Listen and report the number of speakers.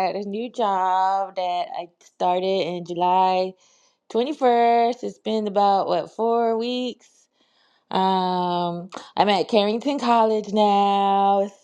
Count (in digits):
1